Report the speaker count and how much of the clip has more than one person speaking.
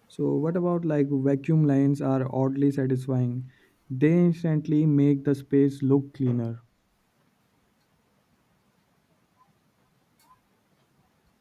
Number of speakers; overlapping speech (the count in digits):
1, no overlap